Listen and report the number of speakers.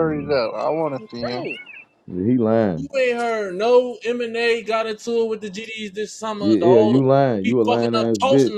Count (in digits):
3